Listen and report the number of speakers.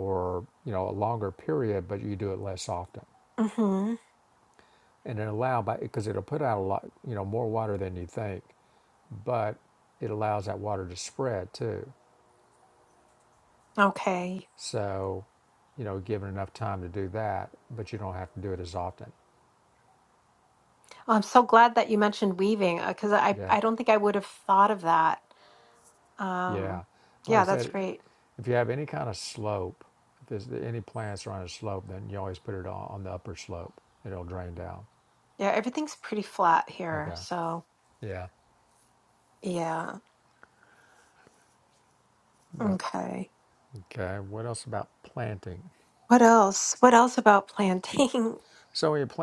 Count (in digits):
2